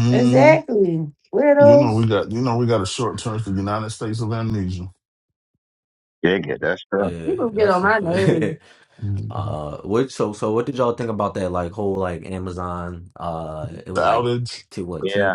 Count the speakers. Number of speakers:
4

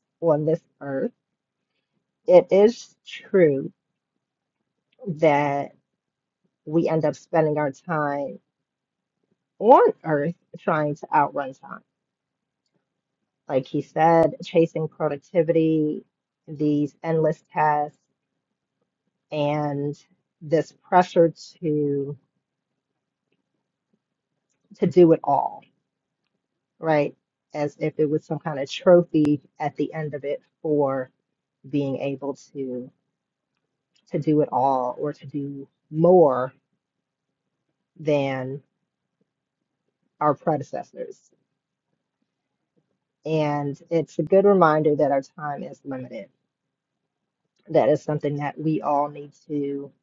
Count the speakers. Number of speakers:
1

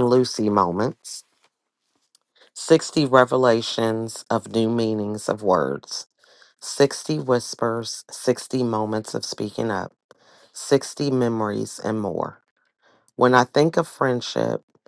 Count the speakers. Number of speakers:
1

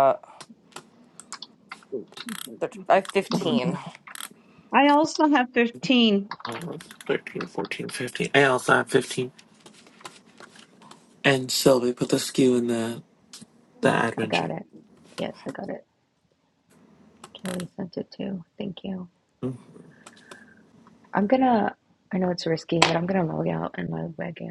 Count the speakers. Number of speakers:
4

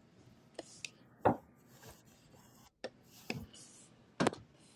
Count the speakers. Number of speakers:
0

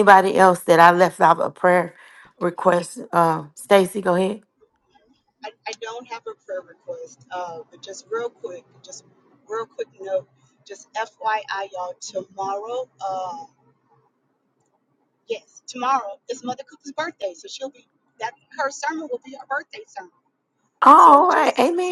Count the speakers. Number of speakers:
2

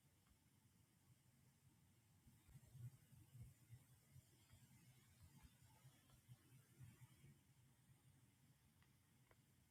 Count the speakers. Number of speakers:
0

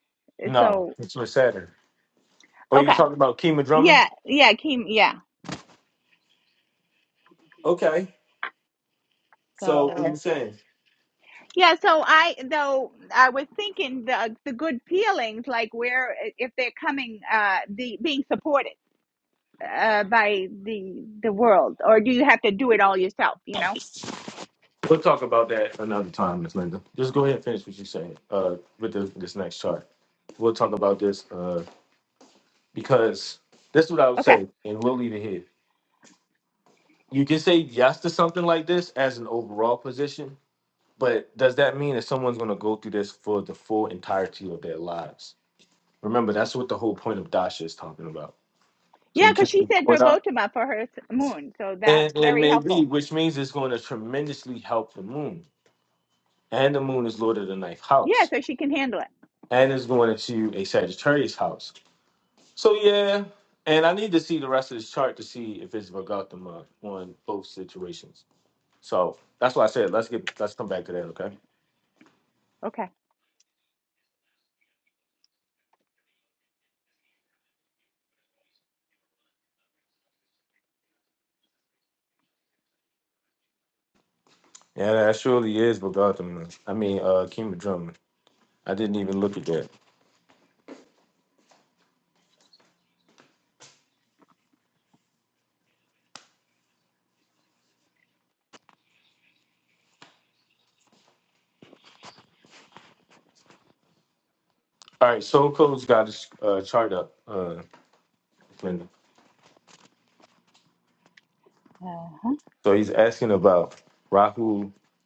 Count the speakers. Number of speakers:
2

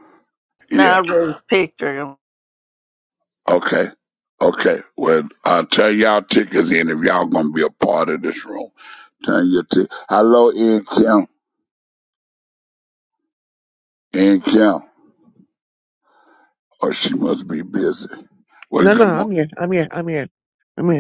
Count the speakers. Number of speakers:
3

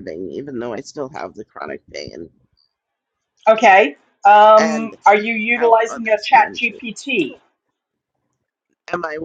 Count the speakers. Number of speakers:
2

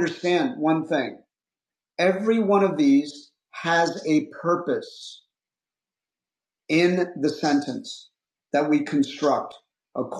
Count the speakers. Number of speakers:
1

